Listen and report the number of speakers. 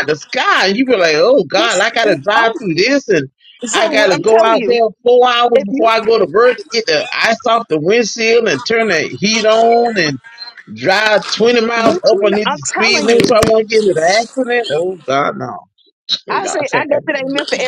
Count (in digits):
2